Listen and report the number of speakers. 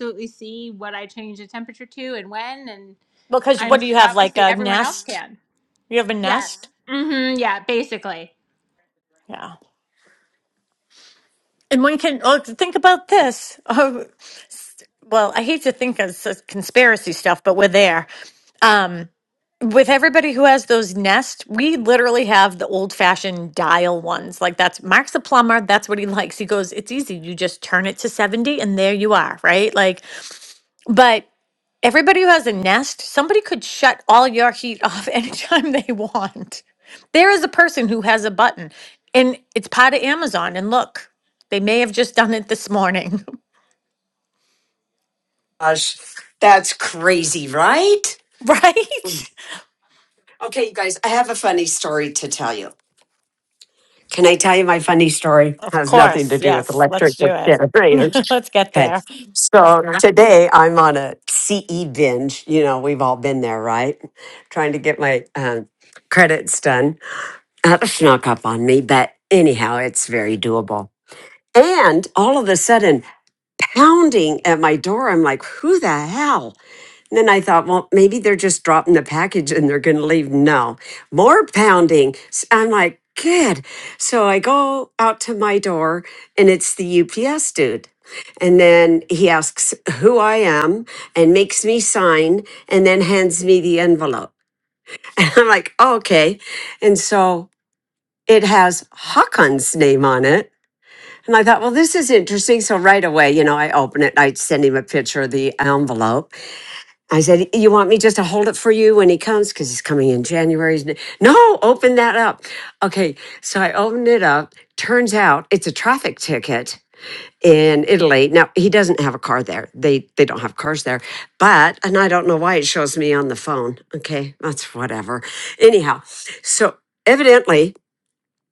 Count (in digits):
3